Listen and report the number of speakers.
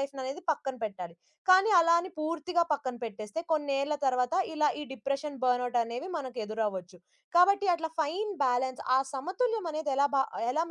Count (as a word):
one